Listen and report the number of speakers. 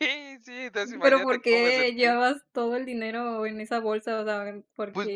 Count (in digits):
2